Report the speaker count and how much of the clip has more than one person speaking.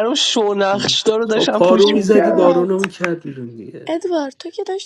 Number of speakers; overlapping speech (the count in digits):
3, about 32%